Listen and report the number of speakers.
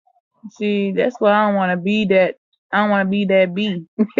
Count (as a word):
one